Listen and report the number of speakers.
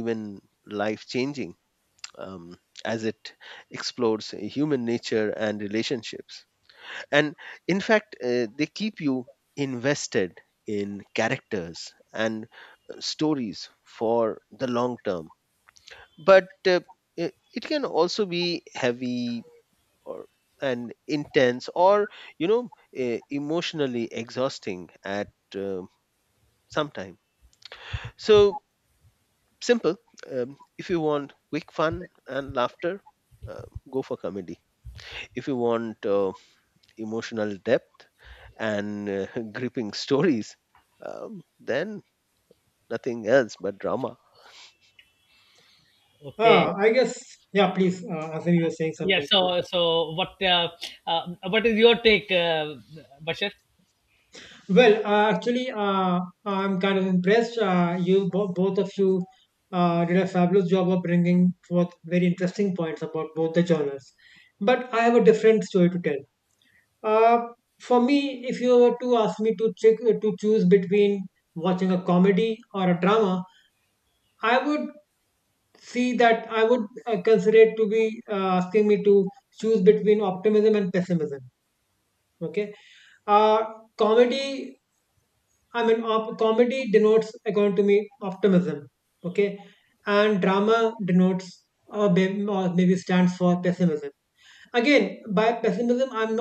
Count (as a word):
three